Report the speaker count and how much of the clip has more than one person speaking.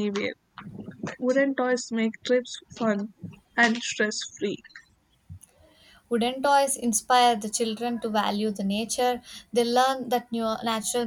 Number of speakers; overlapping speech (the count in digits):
2, no overlap